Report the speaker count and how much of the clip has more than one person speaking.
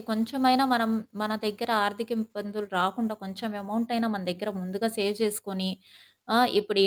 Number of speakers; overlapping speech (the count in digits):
1, no overlap